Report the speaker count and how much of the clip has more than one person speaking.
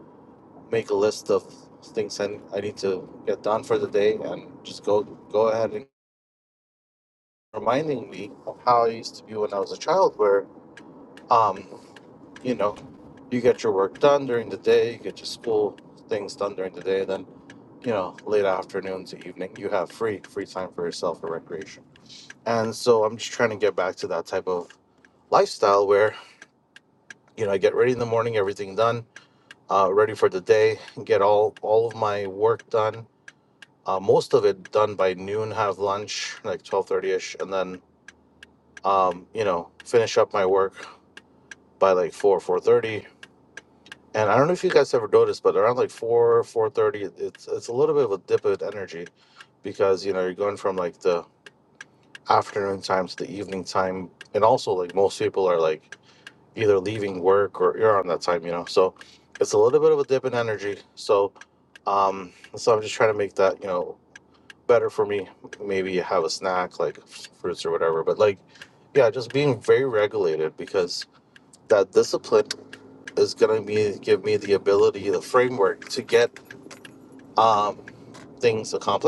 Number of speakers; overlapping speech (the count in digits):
1, no overlap